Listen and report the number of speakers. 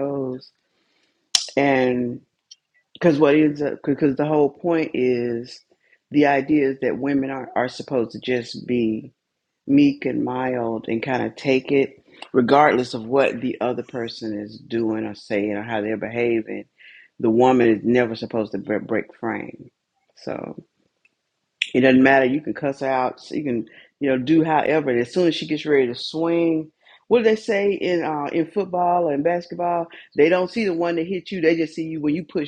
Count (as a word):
one